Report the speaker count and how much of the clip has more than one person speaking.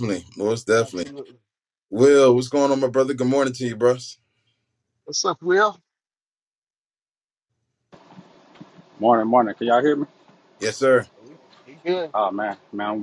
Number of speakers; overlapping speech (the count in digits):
3, about 2%